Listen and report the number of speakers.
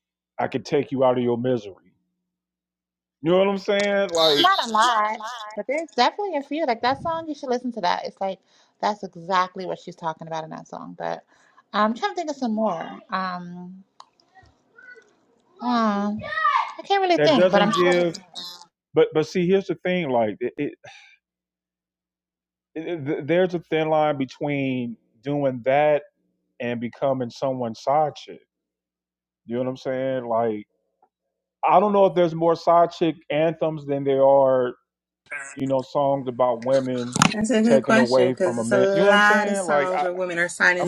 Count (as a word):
three